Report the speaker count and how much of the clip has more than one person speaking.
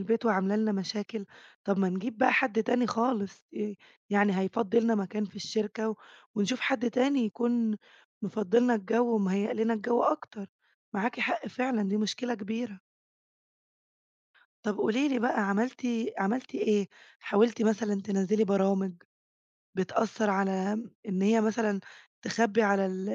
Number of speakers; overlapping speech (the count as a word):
one, no overlap